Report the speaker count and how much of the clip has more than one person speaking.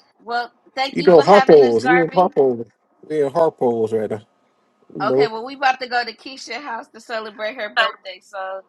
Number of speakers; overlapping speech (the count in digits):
2, about 19%